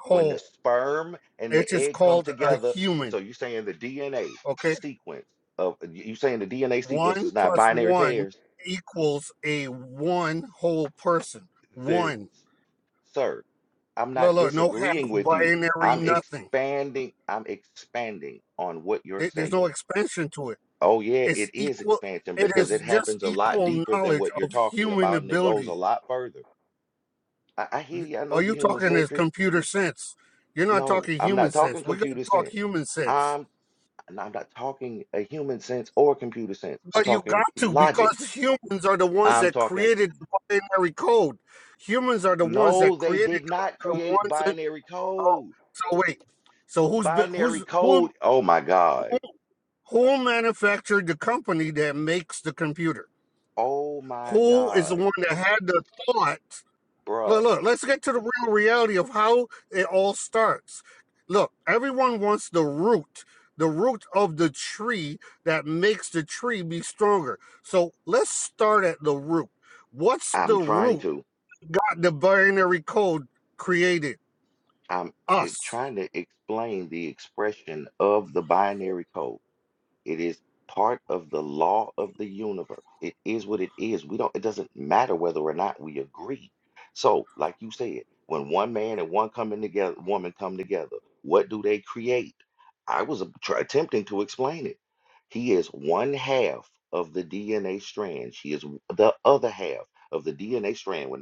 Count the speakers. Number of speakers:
2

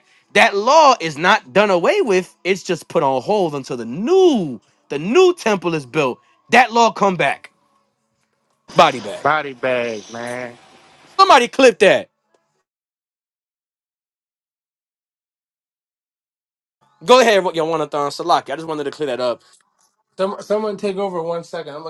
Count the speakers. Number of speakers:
3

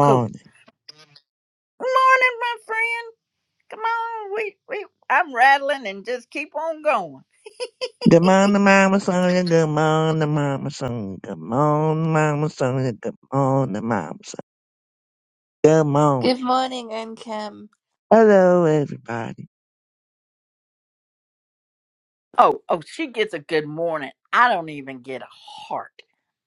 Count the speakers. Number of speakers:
3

